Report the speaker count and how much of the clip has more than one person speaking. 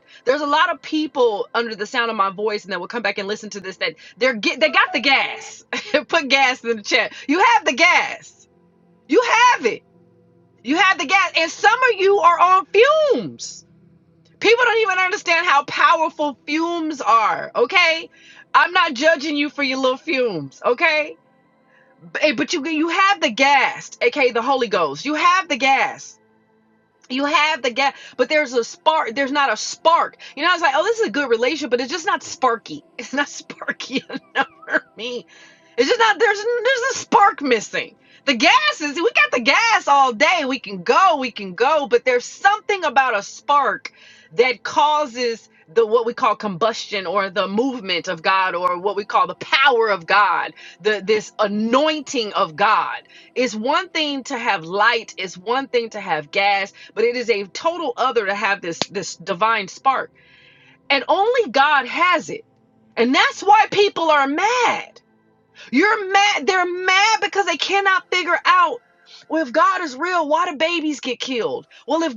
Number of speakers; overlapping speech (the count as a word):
one, no overlap